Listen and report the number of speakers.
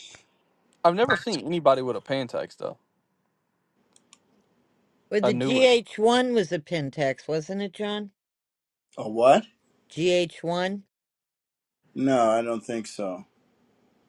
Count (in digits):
3